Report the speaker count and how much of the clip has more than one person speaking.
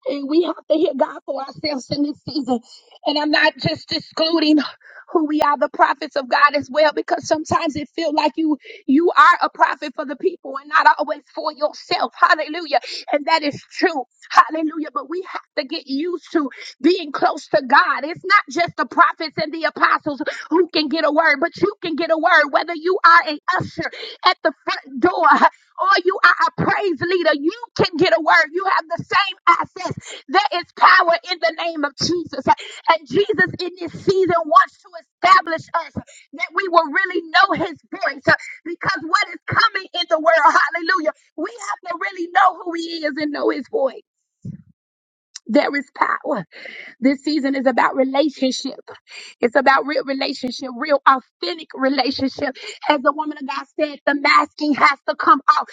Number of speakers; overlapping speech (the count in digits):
1, no overlap